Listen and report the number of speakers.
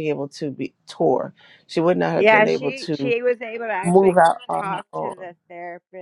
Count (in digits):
2